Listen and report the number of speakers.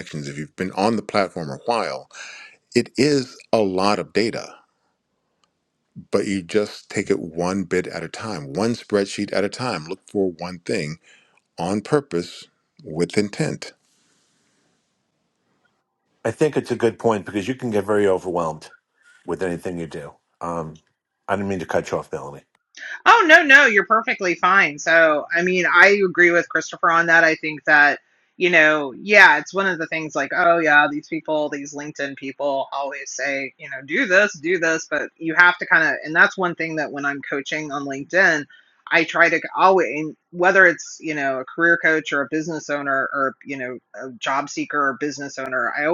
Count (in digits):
3